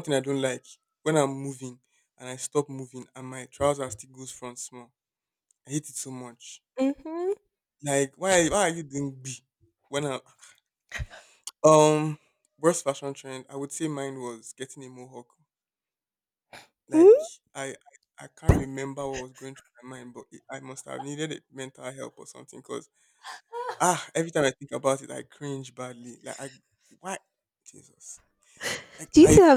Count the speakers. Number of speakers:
two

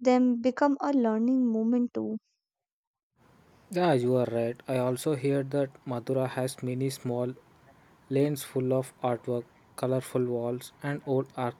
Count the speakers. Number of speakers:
two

